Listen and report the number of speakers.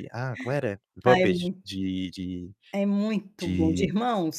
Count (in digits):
2